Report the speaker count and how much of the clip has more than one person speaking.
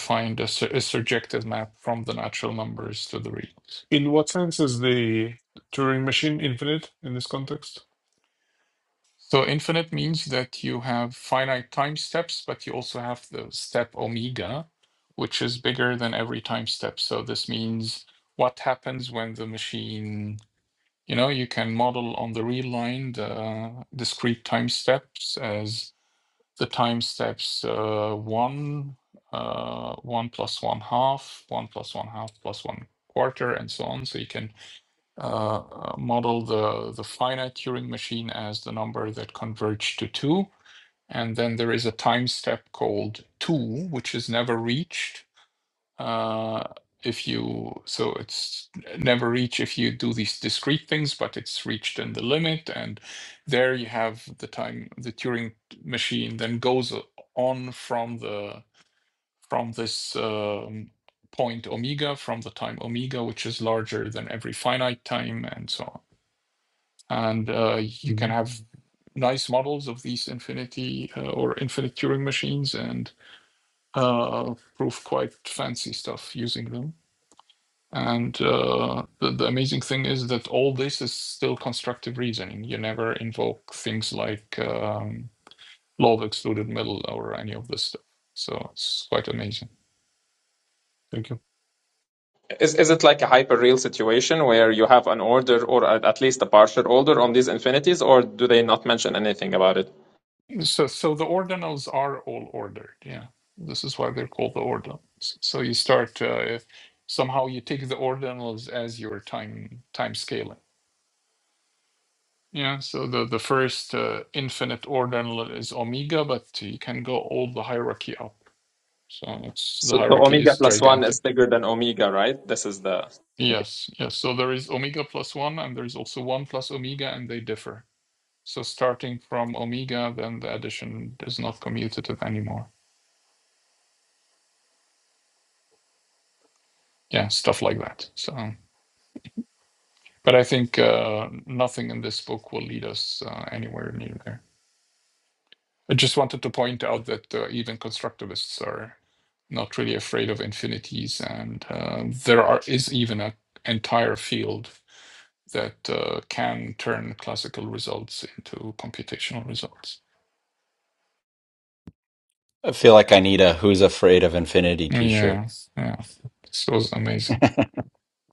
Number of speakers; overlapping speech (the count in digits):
4, about 1%